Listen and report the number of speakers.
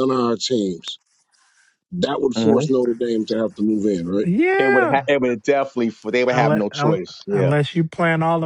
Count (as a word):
three